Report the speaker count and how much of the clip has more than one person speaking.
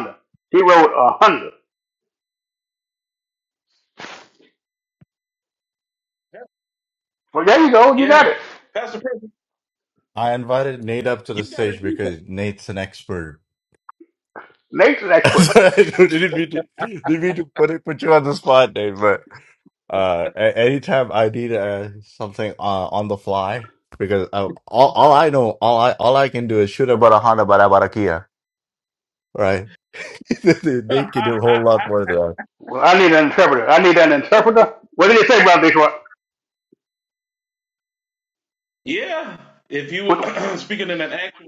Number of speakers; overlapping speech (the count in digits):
3, about 4%